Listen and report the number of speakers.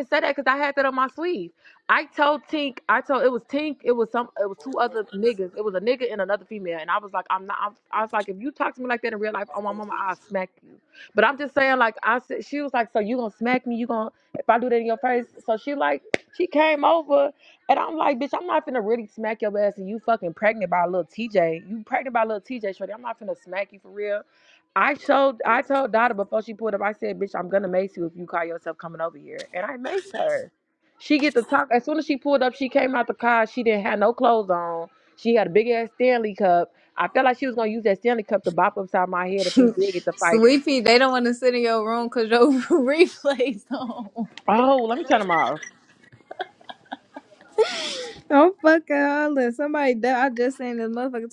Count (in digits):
2